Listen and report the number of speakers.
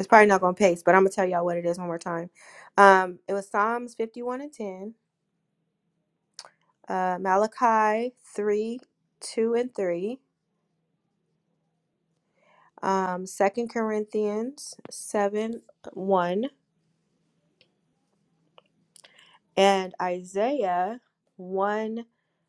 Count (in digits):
1